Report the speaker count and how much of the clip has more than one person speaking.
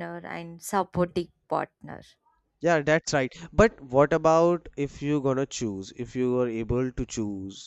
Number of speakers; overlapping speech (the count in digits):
2, no overlap